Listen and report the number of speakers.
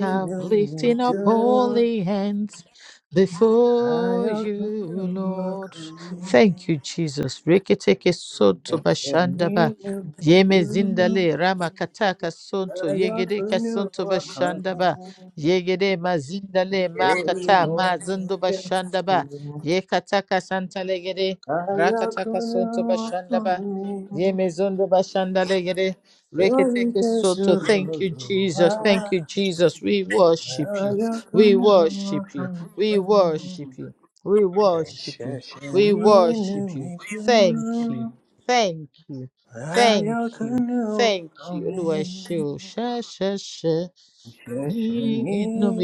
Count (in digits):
2